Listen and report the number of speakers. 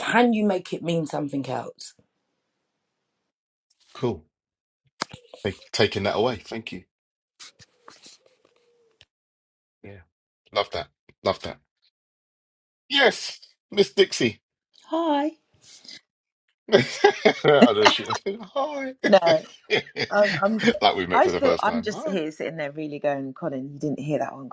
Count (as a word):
three